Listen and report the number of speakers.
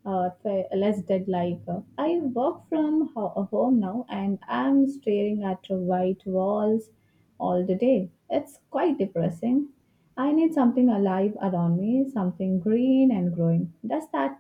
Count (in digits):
1